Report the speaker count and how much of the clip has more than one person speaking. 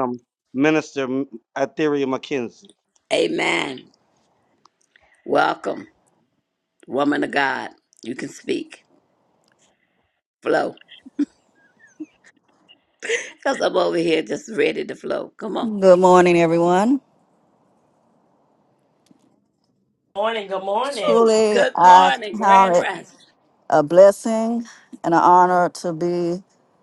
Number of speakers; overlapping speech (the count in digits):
4, about 6%